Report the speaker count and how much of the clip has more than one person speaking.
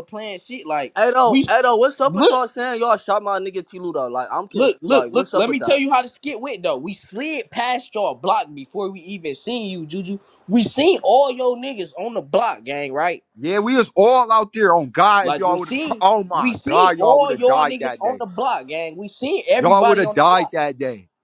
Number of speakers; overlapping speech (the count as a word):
three, about 25%